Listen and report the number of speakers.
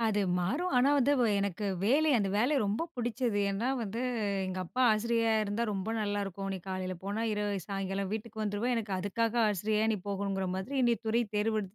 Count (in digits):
1